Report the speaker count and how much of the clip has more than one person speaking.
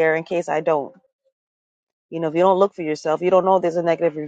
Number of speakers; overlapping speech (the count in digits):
1, no overlap